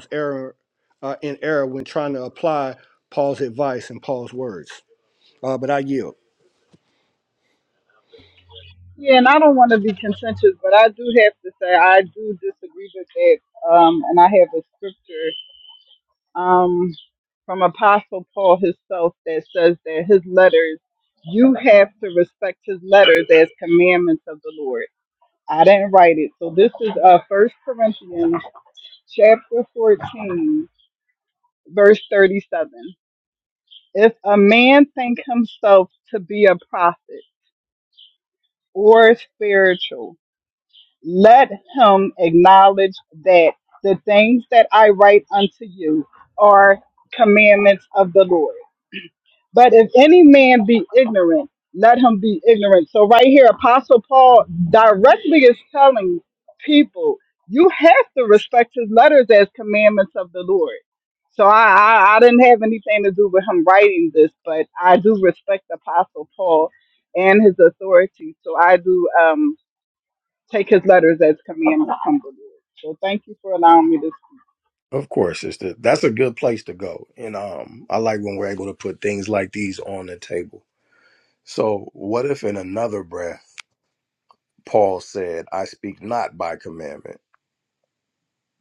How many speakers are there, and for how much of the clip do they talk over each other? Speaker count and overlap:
3, no overlap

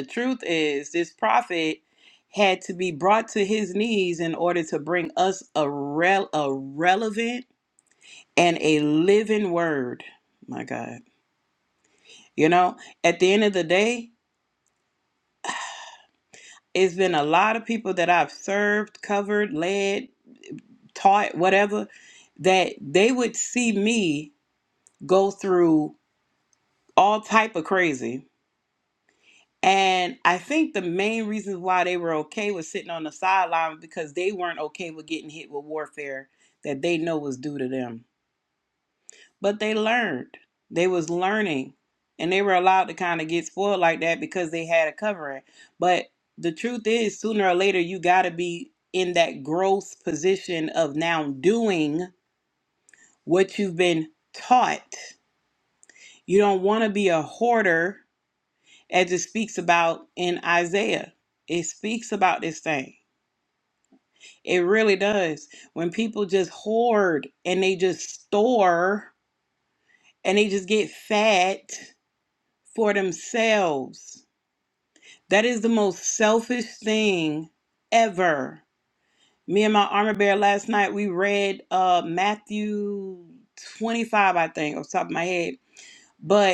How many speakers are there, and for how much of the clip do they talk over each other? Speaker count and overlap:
1, no overlap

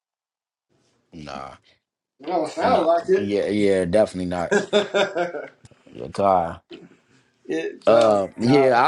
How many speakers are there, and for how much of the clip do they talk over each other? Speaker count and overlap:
2, about 19%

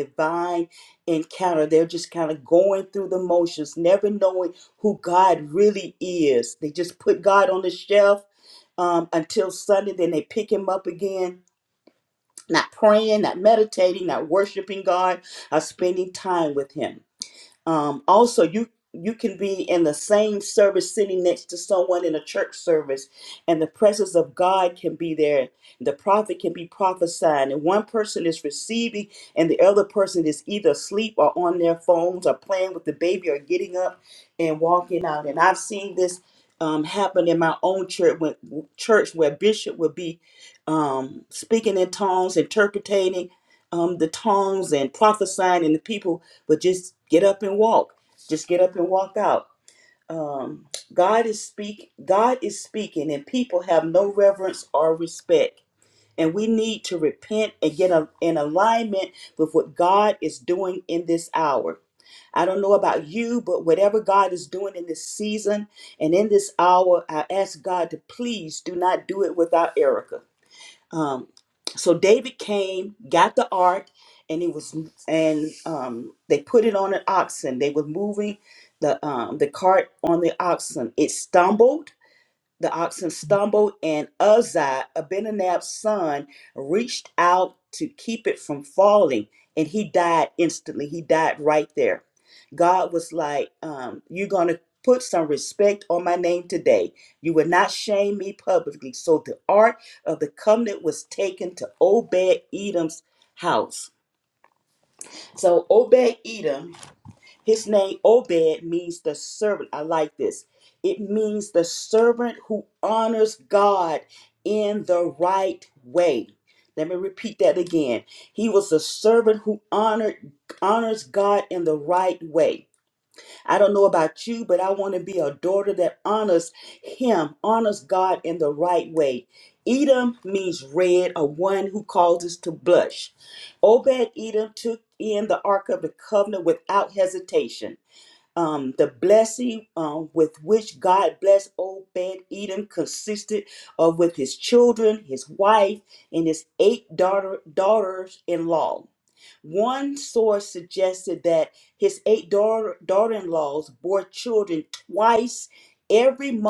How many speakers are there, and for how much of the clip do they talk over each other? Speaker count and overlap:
1, no overlap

